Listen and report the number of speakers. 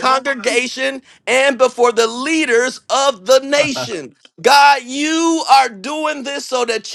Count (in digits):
1